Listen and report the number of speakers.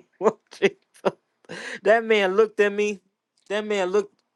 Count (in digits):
1